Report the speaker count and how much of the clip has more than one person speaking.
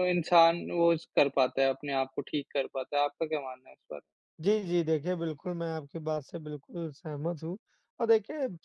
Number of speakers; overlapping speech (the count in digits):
2, no overlap